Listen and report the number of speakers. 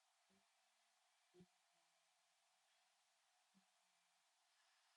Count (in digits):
0